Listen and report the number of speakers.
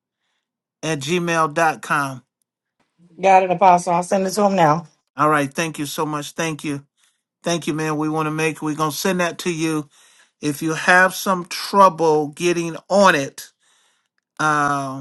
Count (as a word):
two